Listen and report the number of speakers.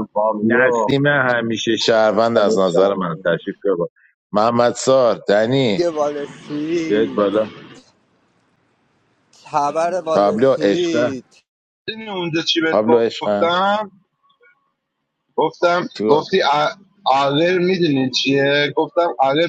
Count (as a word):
three